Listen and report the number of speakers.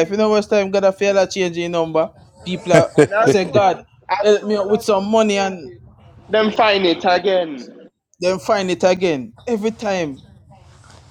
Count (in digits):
2